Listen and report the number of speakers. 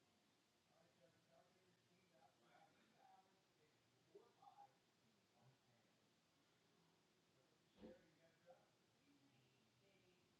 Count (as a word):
zero